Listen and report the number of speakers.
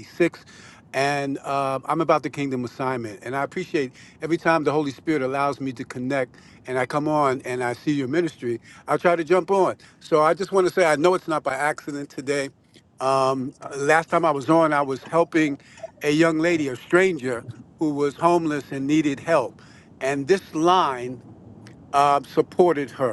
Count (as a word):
one